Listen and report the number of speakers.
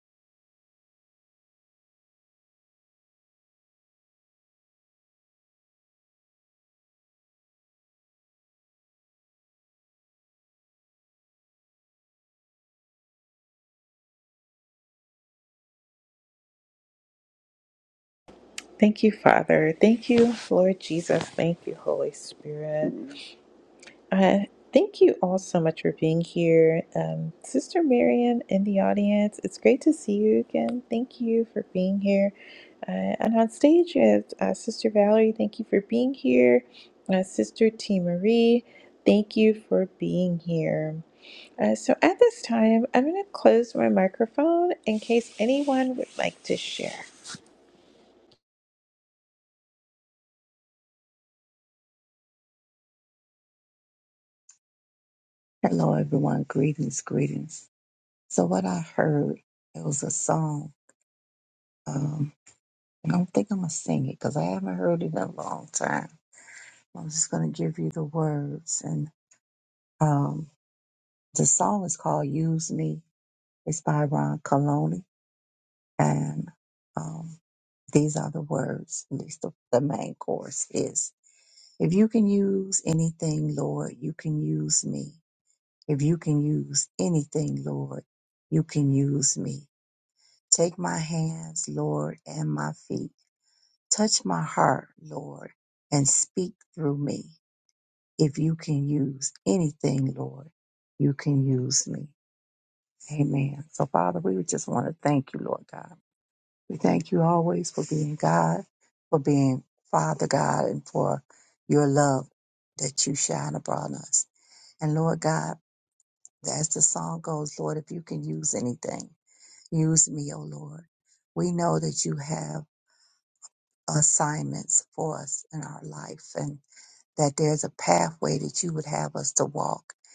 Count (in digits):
2